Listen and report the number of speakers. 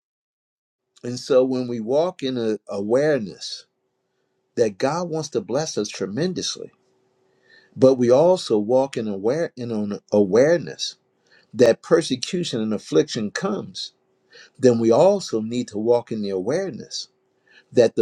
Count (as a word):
one